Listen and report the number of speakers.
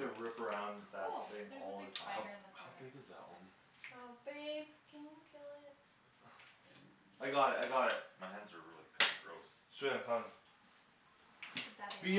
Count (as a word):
four